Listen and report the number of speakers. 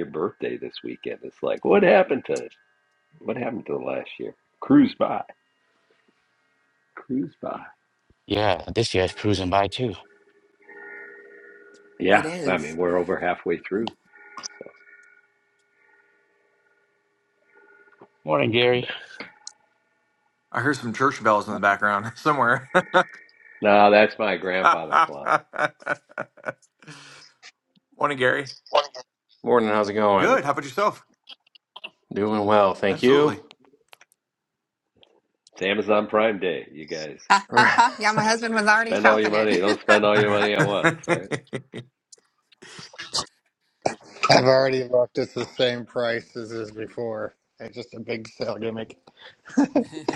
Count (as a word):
six